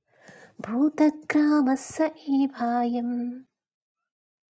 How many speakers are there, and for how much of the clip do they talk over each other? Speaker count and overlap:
one, no overlap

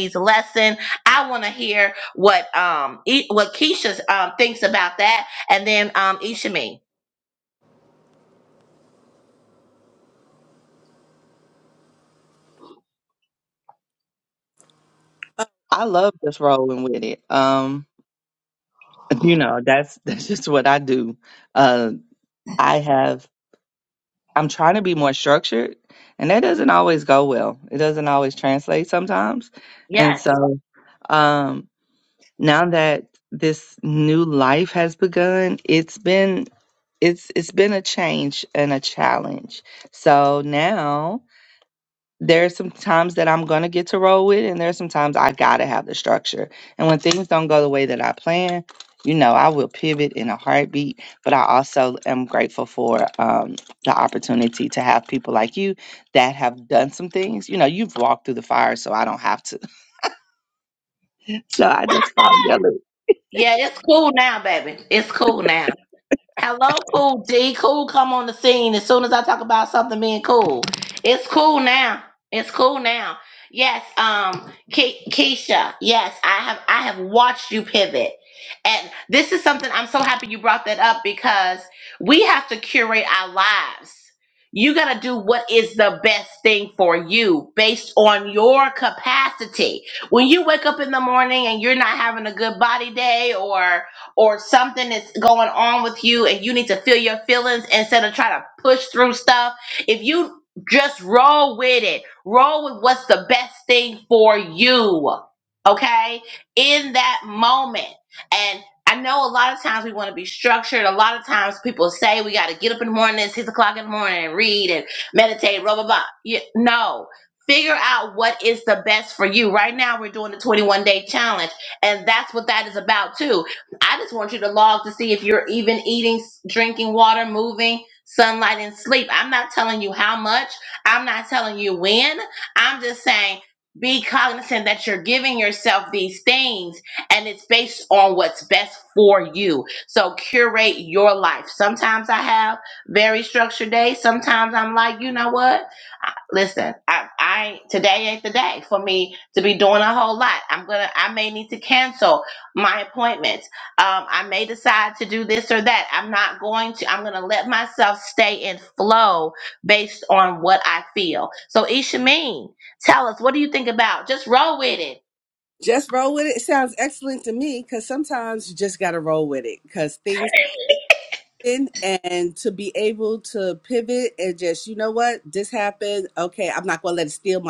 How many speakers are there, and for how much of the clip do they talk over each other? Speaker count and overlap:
three, under 1%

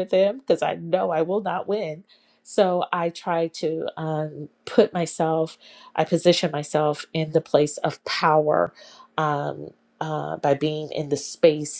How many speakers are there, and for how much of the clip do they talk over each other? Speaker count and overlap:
one, no overlap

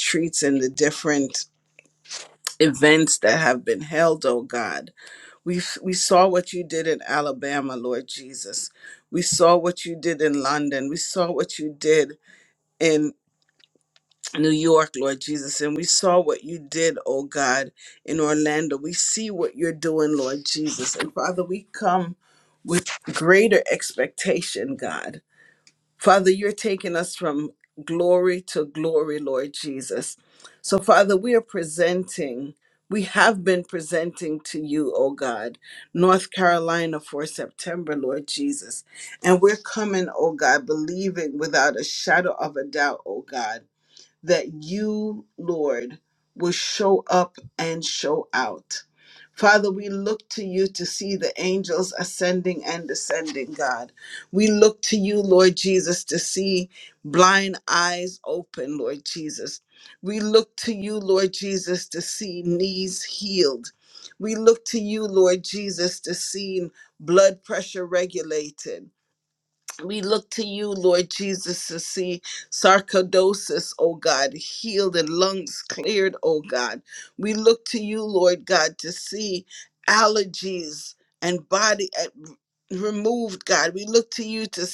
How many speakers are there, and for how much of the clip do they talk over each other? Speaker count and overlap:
one, no overlap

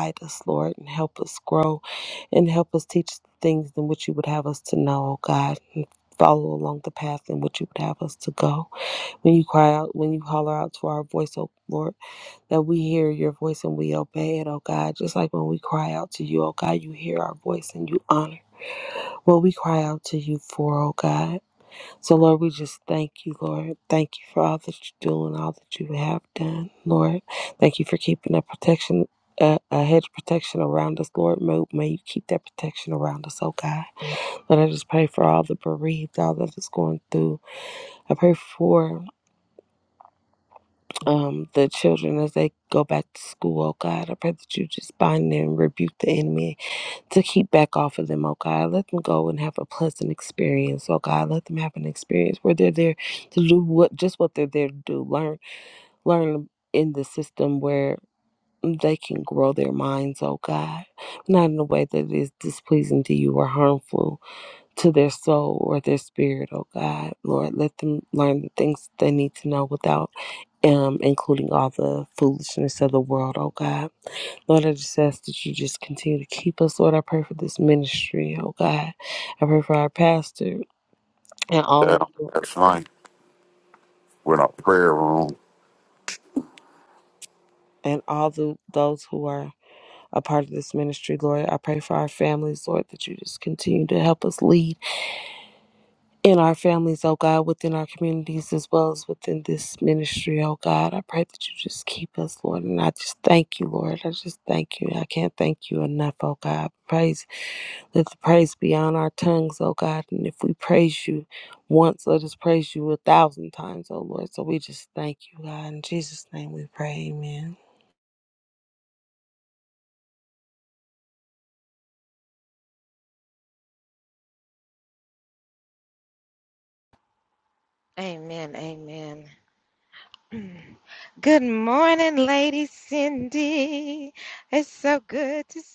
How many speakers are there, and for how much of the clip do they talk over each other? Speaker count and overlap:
three, under 1%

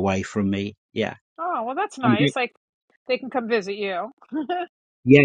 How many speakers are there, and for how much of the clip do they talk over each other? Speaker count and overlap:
two, about 4%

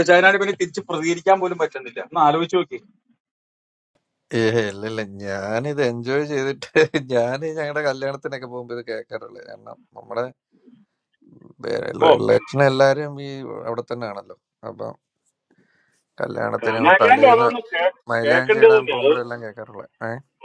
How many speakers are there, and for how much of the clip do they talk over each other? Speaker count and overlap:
three, about 10%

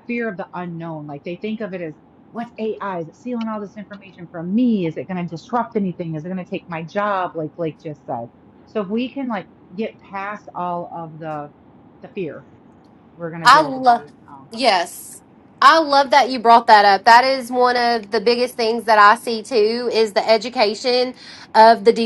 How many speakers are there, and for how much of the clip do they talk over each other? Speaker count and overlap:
two, about 3%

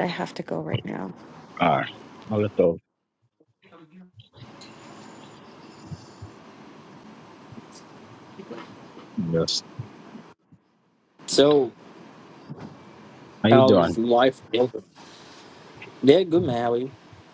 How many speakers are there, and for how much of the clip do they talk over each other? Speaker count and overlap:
three, about 3%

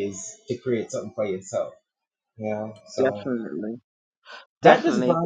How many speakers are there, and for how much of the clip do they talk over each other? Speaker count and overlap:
two, about 18%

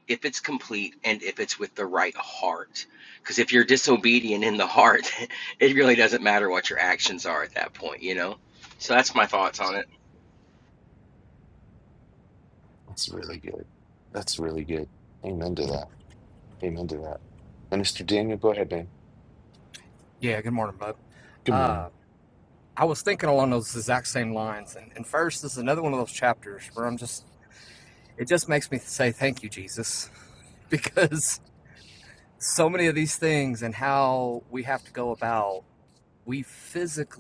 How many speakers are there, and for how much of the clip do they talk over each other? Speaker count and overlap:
three, about 1%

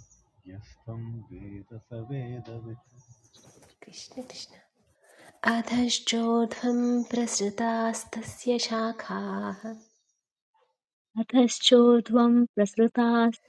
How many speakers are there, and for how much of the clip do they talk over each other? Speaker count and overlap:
three, no overlap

